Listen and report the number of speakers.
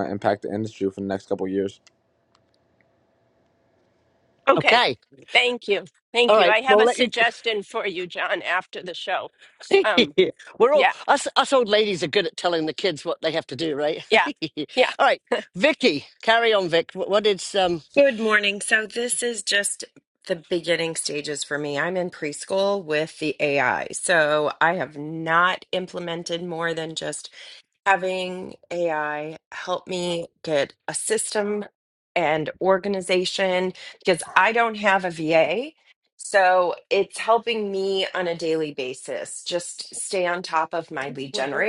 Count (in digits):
4